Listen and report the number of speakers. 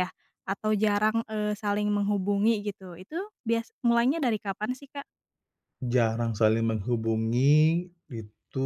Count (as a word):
two